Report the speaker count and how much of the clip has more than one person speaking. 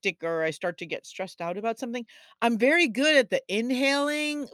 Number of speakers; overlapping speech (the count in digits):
1, no overlap